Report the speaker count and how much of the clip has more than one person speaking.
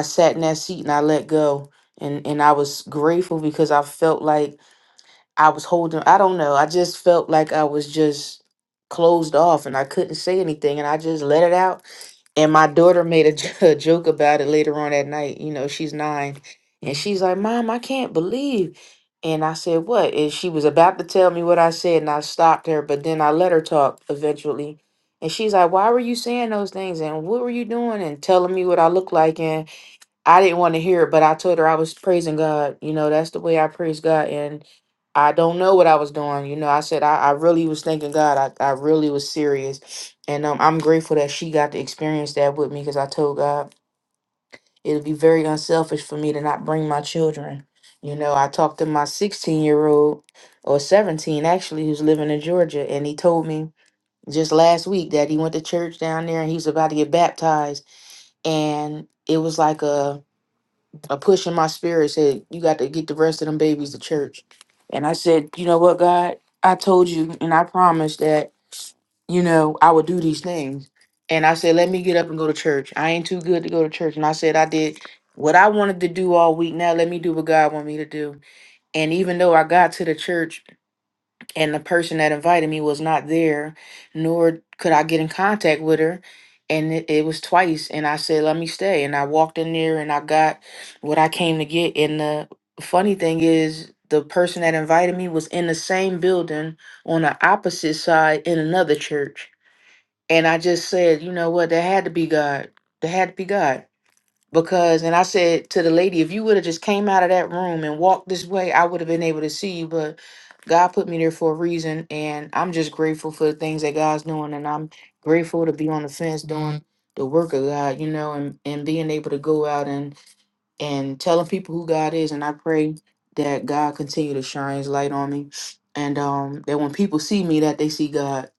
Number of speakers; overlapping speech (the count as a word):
one, no overlap